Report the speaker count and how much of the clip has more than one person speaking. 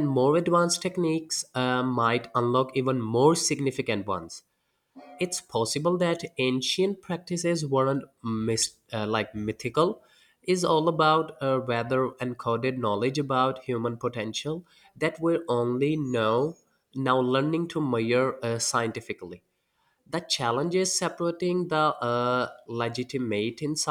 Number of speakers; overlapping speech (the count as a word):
one, no overlap